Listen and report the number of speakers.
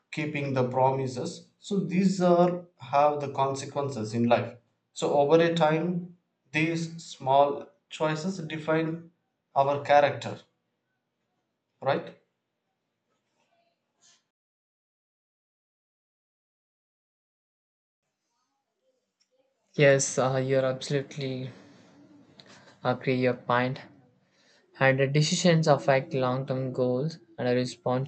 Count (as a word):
two